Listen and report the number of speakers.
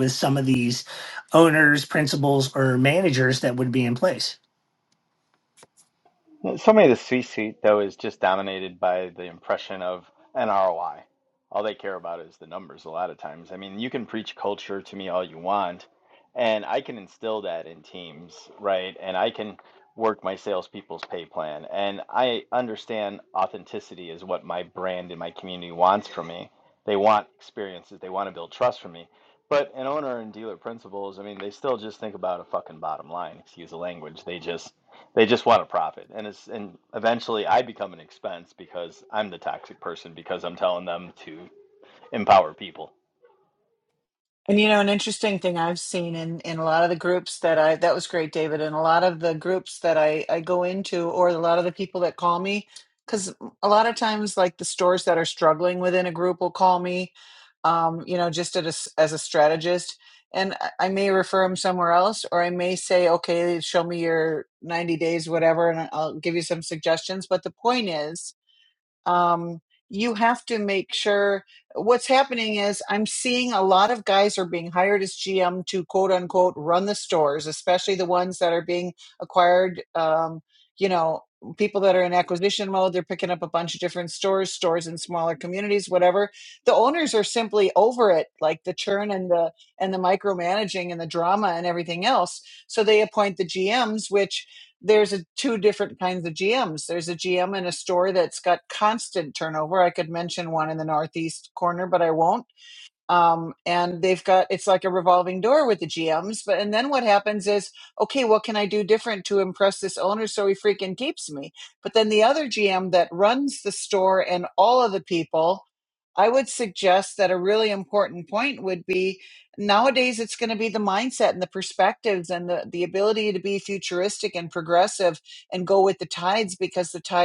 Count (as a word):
three